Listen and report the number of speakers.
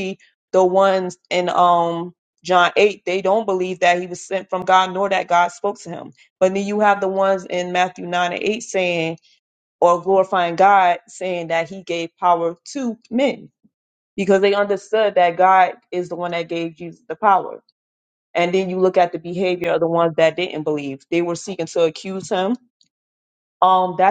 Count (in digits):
1